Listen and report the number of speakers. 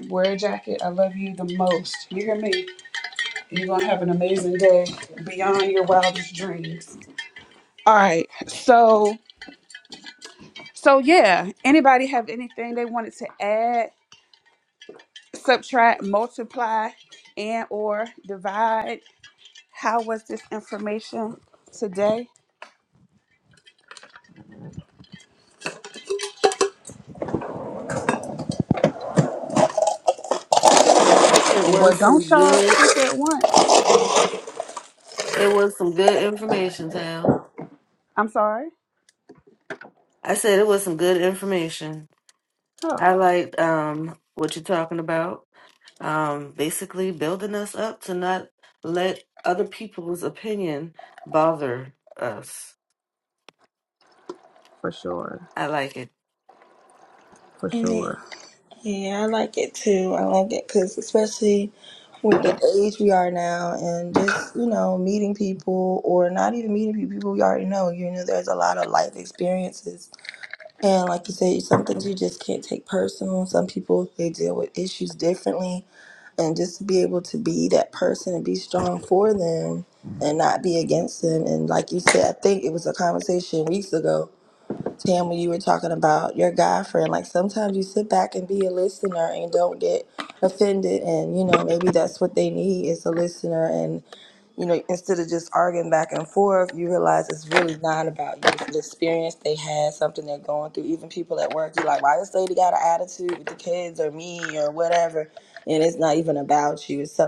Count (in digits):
3